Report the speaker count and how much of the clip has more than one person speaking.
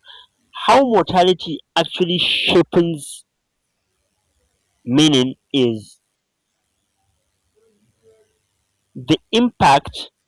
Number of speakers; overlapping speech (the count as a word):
one, no overlap